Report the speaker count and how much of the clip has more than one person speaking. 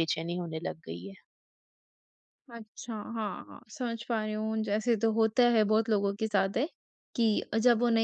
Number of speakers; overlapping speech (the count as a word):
two, no overlap